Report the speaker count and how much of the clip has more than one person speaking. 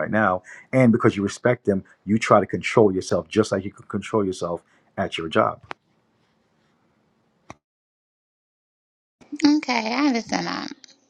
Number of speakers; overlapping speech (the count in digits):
2, no overlap